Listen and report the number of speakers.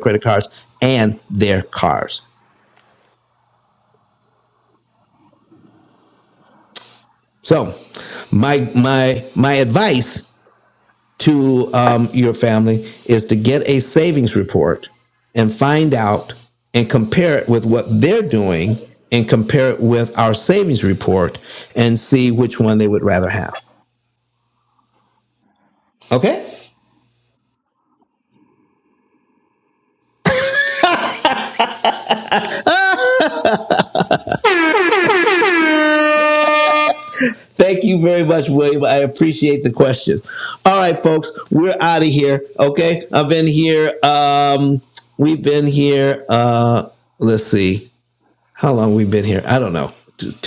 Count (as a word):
one